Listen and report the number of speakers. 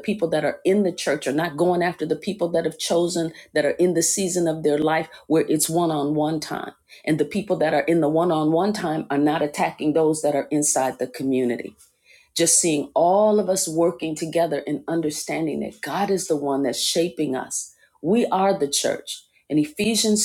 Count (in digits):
1